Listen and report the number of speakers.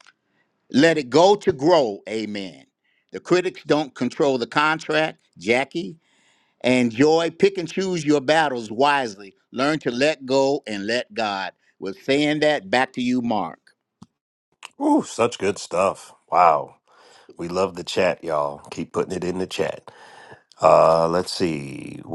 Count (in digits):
2